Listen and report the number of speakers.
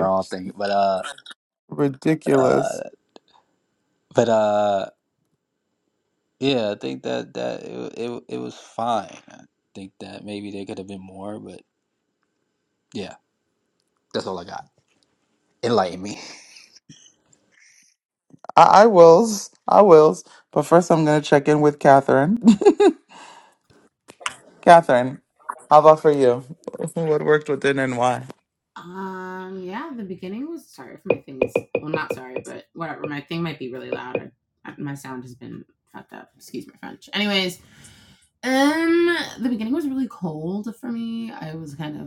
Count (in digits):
3